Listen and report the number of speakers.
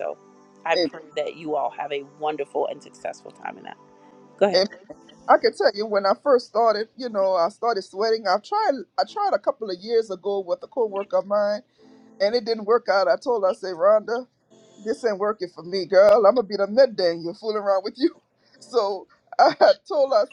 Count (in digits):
2